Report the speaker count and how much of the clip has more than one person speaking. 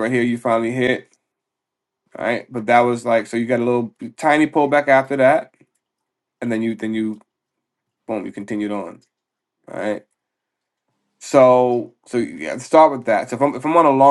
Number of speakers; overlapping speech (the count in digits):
1, no overlap